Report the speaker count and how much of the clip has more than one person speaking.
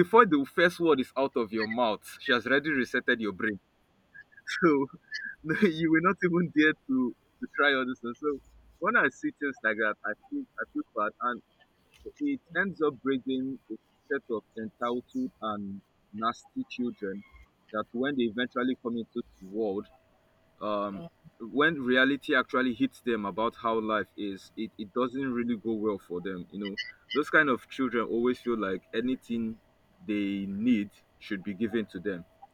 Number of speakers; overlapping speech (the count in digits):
1, no overlap